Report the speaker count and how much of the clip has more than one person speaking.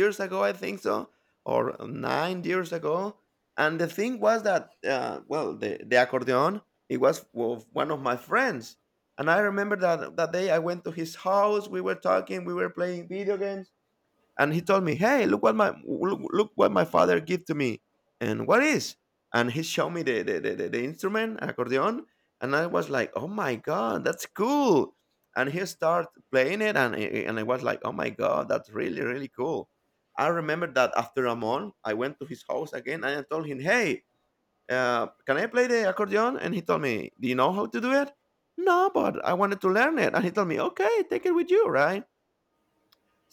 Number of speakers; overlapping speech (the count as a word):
one, no overlap